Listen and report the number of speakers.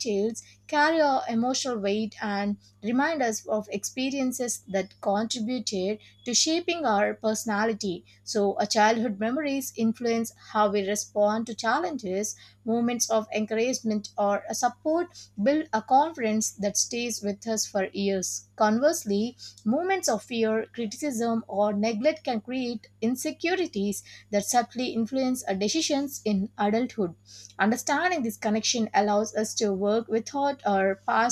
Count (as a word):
one